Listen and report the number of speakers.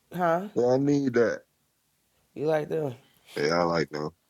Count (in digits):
2